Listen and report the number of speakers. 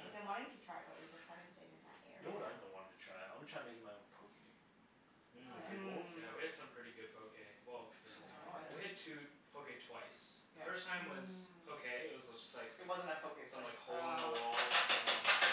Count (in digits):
4